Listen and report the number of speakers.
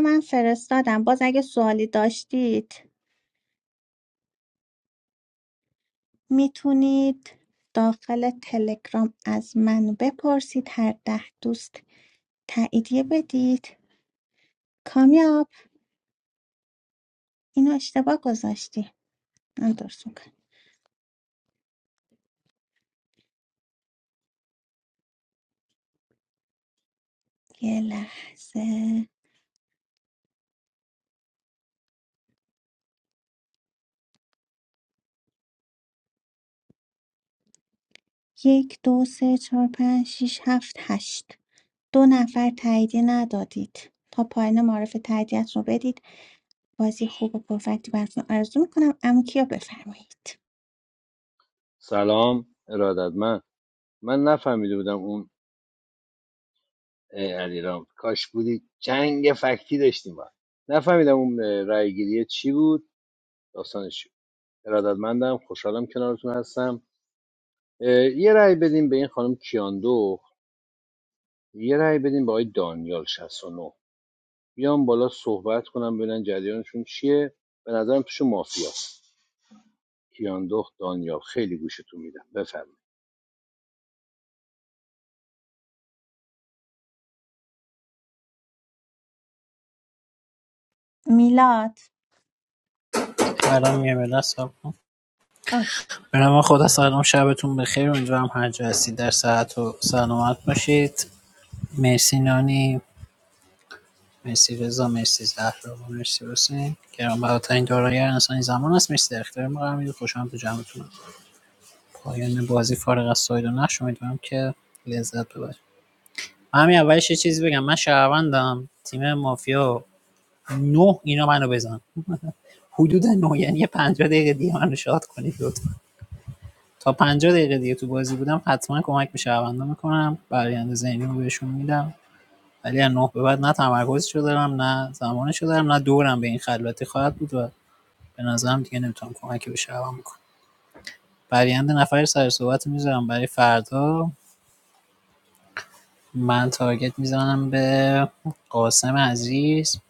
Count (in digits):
3